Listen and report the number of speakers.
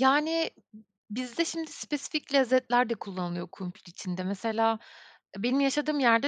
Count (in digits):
1